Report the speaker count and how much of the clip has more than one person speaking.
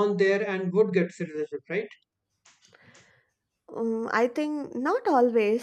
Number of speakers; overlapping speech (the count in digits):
2, no overlap